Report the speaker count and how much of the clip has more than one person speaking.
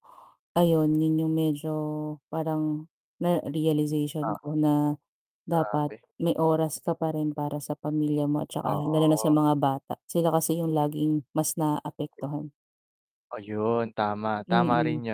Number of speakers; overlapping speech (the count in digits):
2, about 13%